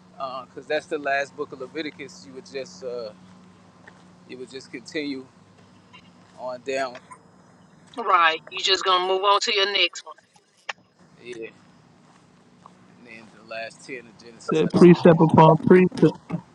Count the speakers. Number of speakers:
3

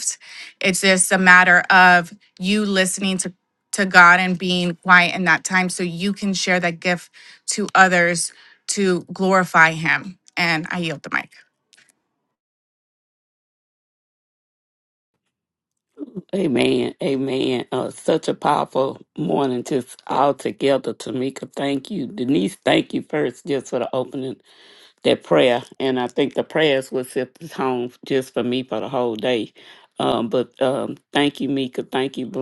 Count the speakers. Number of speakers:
2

